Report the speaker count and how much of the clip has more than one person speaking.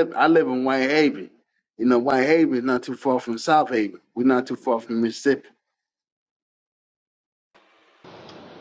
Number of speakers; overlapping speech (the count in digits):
1, no overlap